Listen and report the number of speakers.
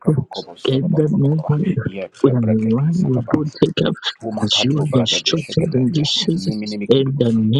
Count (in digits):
2